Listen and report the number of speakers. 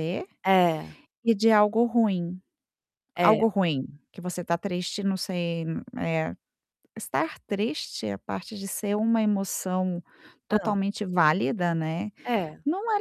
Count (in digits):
2